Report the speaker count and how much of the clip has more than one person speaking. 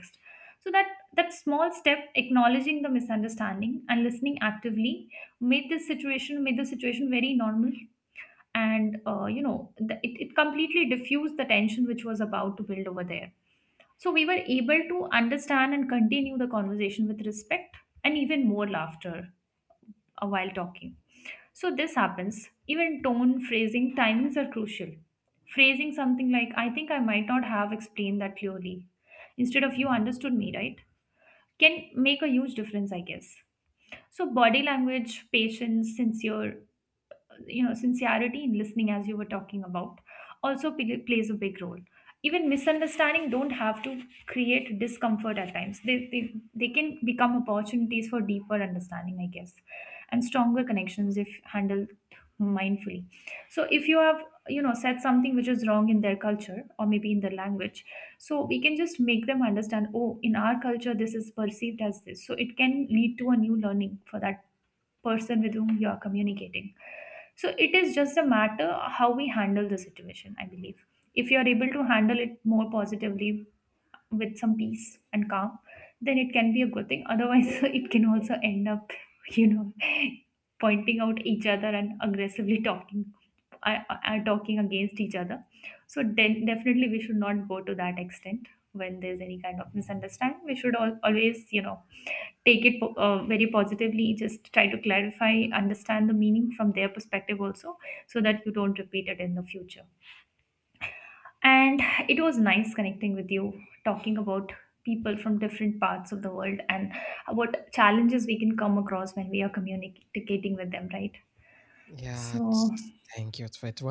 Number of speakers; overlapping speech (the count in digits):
2, under 1%